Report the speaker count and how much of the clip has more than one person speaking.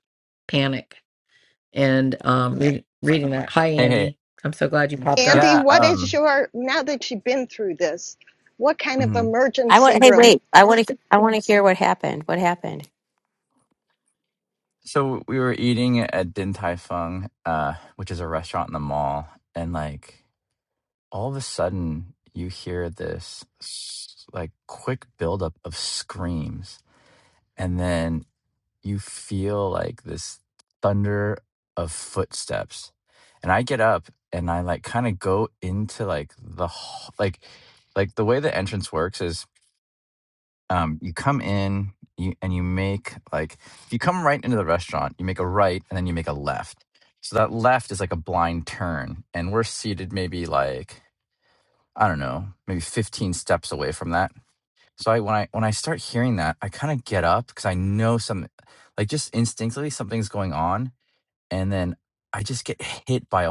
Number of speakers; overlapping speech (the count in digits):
4, about 3%